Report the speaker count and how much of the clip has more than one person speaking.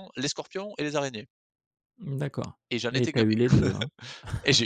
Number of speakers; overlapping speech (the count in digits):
2, about 10%